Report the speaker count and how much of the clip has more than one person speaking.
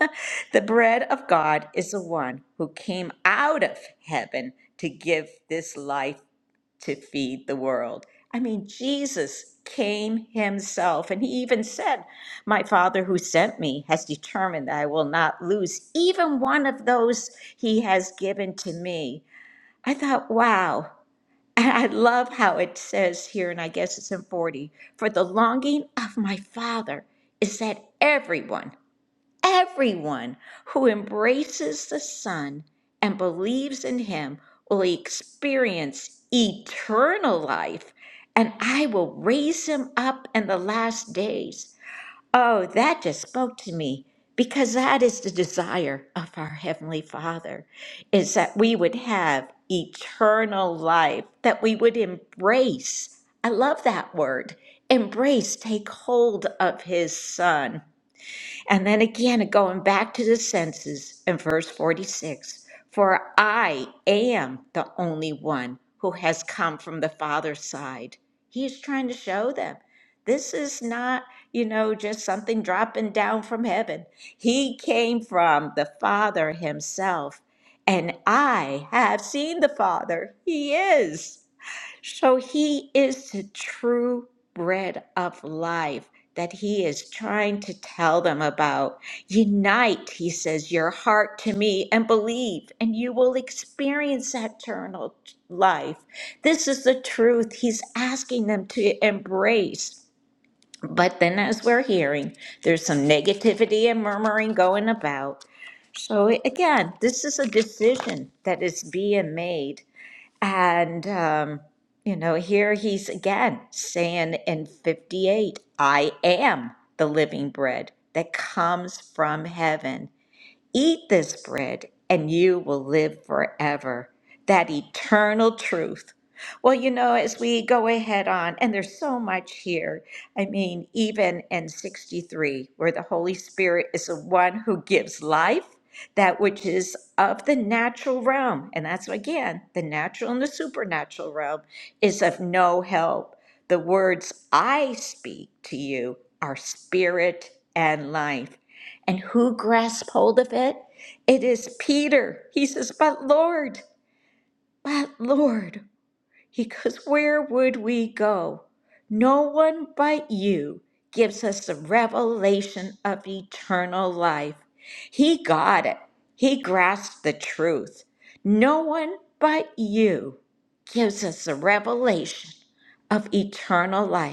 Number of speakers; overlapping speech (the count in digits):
1, no overlap